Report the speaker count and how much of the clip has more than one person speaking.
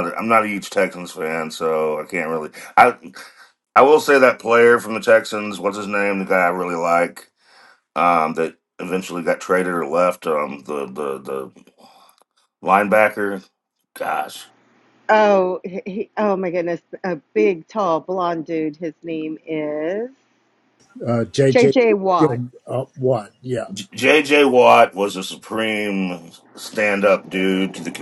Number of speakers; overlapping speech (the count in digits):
3, about 1%